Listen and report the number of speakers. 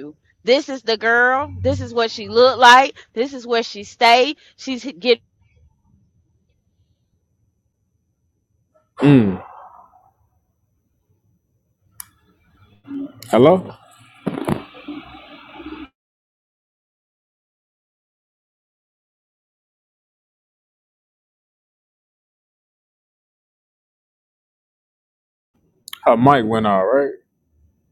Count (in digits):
2